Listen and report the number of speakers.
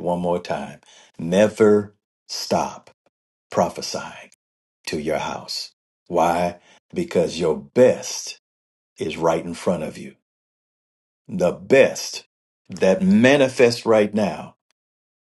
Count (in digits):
1